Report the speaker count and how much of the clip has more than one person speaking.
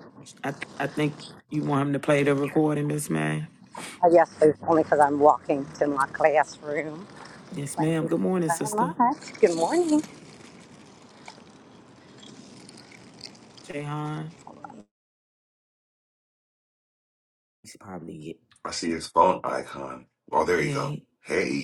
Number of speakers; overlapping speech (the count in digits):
3, about 7%